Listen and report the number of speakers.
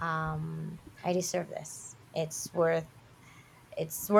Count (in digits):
1